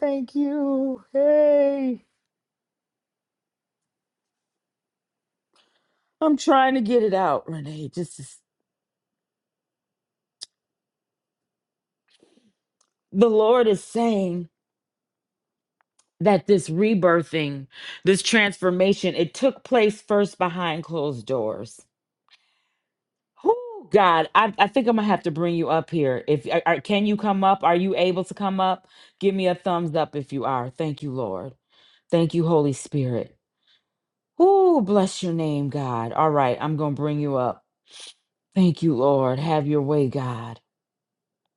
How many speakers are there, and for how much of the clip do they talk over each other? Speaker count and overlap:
1, no overlap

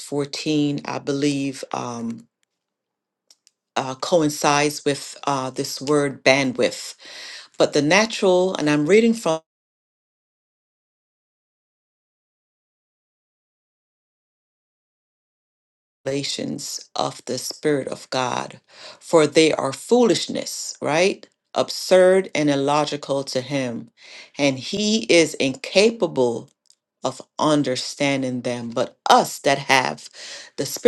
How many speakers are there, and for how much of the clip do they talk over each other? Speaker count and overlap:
1, no overlap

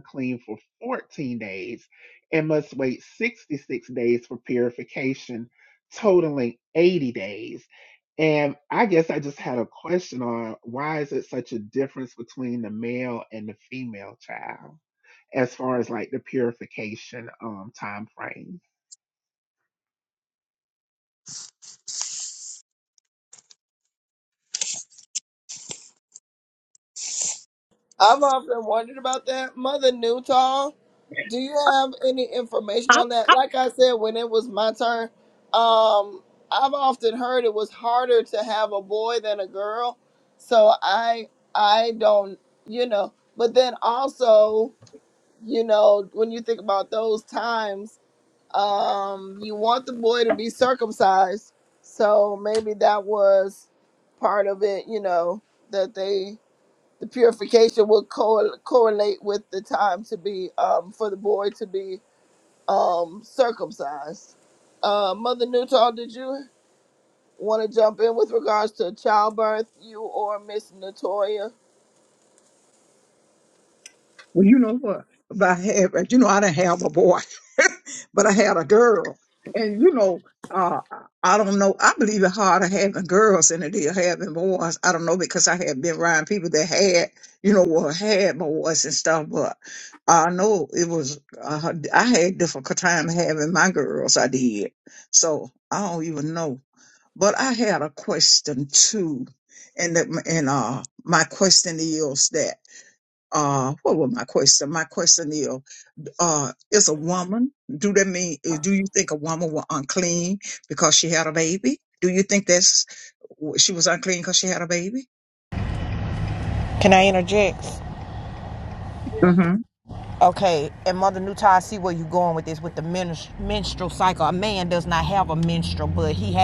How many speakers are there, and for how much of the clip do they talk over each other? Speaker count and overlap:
4, under 1%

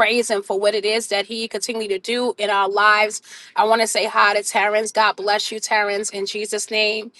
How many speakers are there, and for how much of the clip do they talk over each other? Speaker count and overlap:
1, no overlap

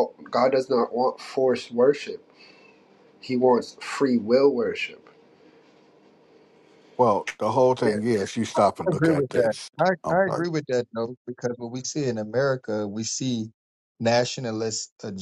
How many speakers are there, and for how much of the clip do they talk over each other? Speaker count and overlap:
3, about 9%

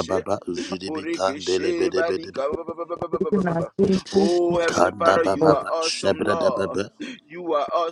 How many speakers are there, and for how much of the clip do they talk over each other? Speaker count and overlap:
3, about 56%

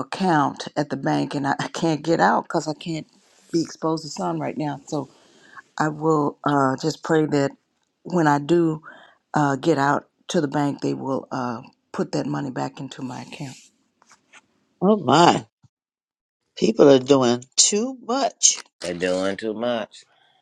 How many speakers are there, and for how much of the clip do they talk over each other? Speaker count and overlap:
3, no overlap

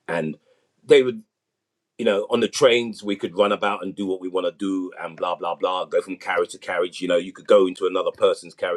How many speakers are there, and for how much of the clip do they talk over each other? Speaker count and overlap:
1, no overlap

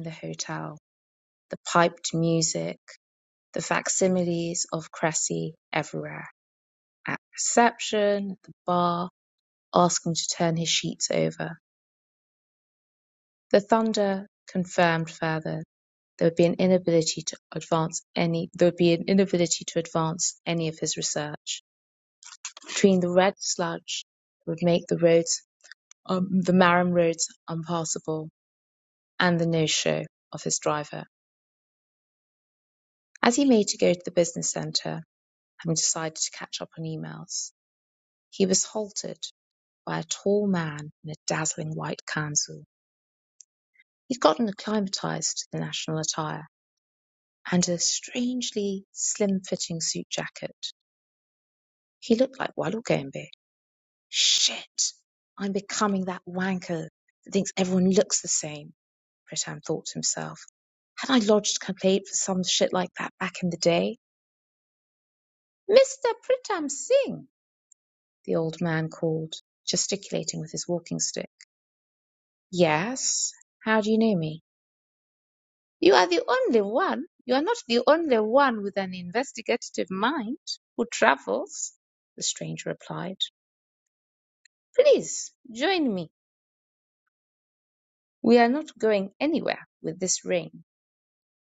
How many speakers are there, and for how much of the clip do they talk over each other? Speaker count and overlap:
1, no overlap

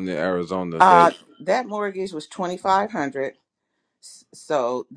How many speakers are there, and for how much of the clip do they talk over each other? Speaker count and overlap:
2, about 7%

